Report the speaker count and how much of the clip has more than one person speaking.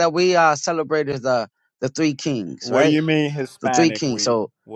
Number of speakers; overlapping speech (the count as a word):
two, about 23%